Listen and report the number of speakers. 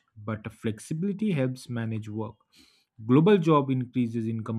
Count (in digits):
1